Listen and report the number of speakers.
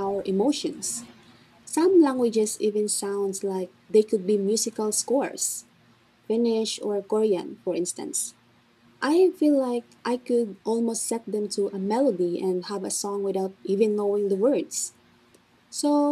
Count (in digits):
1